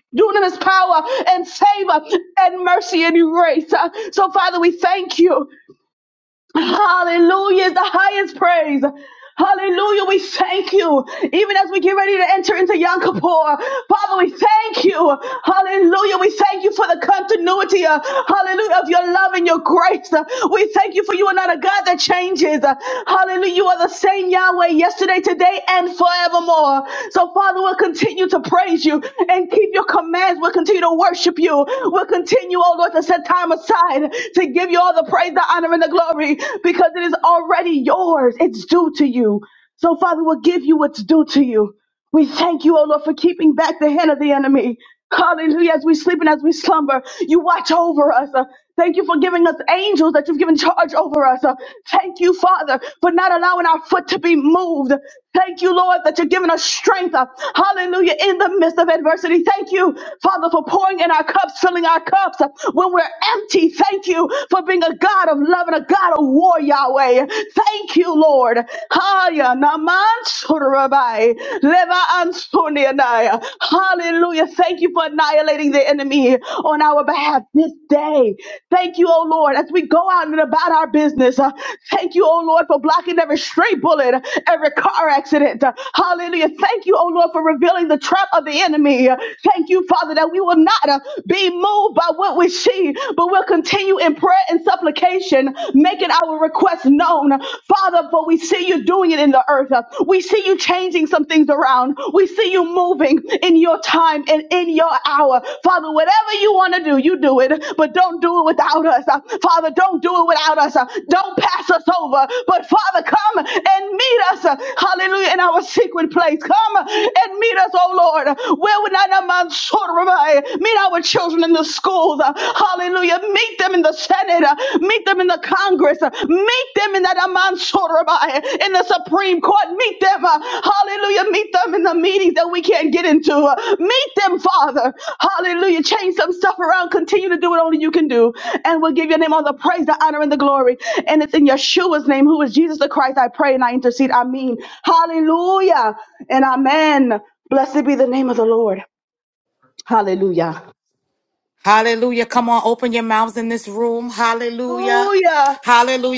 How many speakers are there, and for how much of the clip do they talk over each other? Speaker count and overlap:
2, under 1%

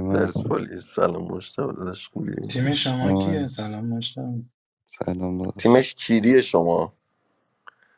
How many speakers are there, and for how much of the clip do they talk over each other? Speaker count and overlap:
3, about 15%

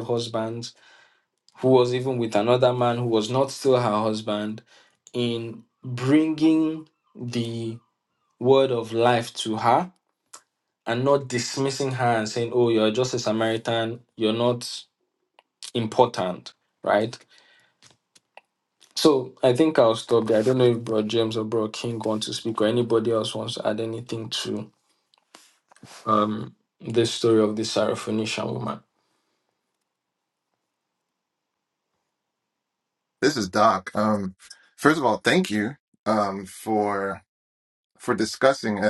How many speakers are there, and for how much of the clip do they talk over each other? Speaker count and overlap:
2, no overlap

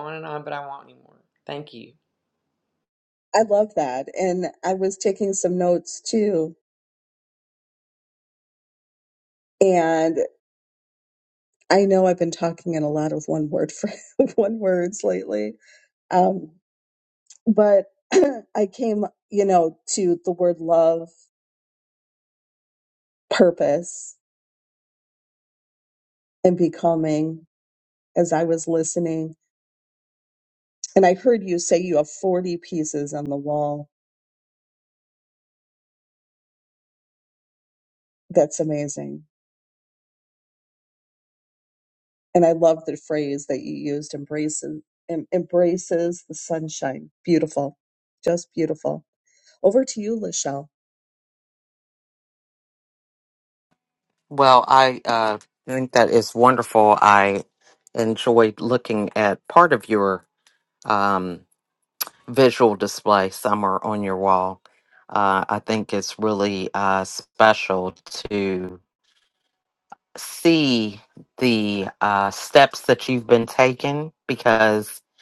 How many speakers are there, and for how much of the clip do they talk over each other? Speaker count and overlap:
3, no overlap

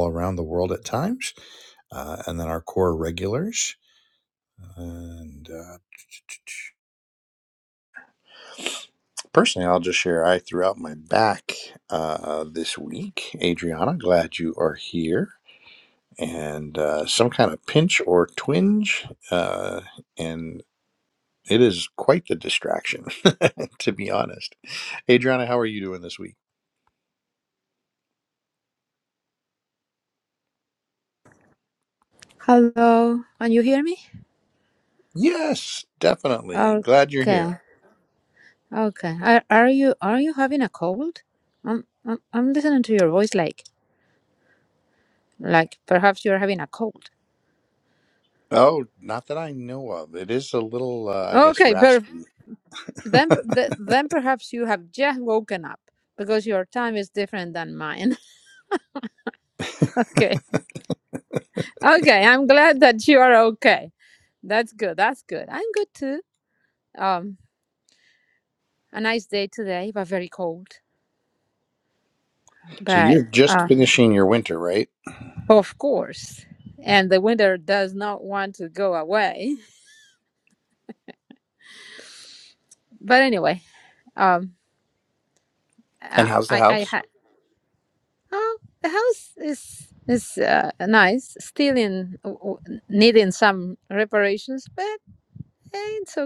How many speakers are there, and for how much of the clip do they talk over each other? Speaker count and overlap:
2, about 3%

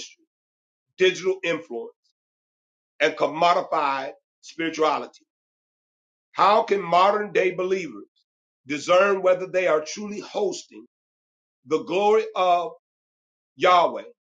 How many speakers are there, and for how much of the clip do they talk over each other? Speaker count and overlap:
1, no overlap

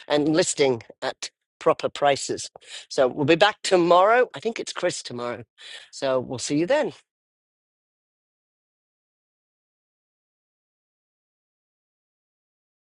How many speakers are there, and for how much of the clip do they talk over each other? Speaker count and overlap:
1, no overlap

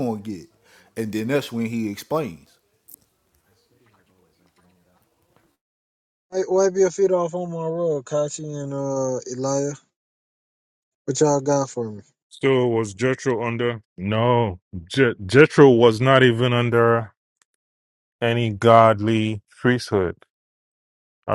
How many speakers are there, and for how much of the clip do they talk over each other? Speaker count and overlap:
3, no overlap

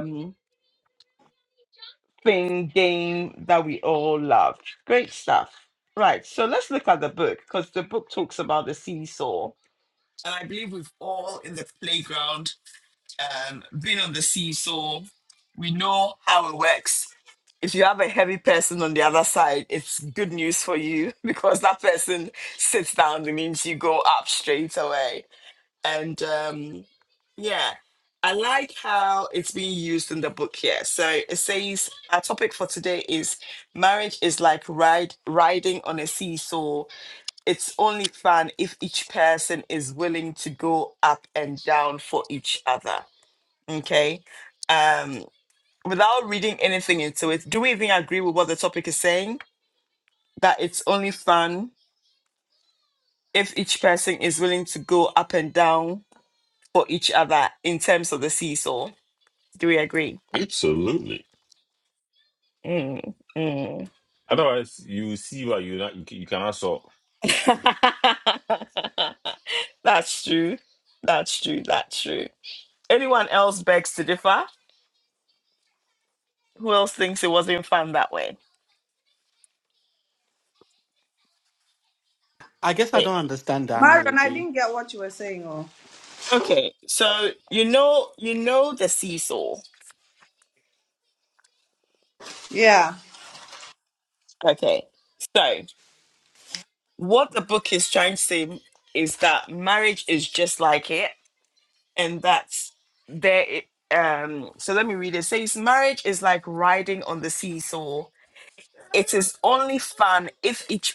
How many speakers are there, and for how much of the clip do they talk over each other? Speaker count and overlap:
4, about 1%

